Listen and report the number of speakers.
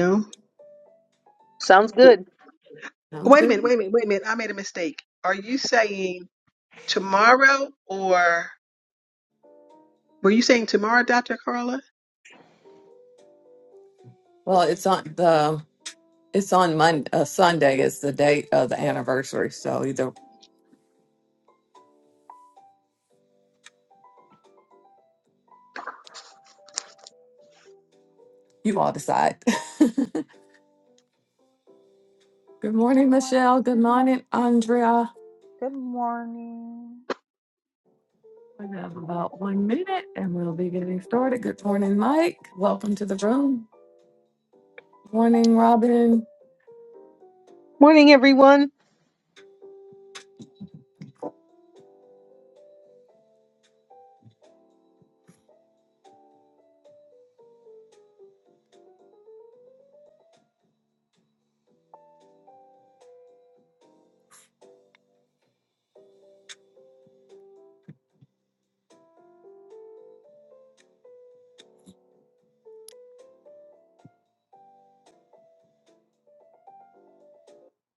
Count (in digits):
4